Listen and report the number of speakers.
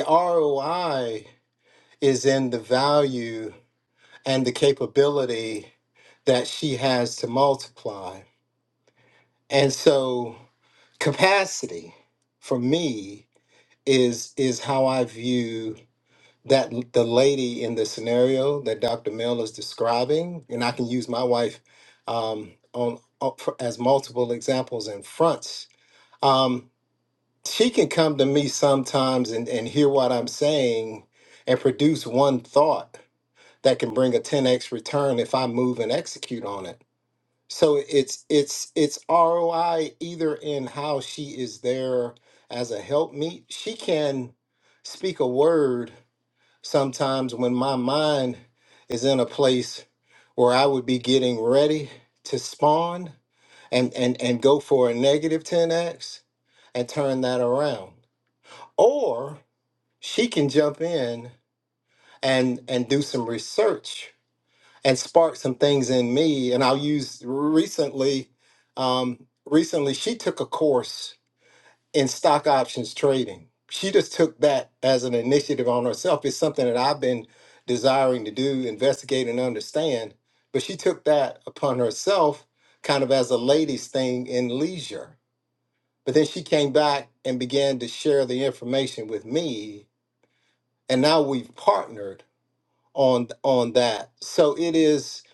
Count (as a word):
one